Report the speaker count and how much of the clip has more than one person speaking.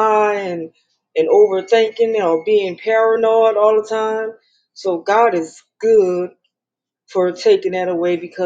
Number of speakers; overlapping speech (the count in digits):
1, no overlap